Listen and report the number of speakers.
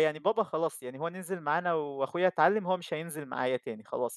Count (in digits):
1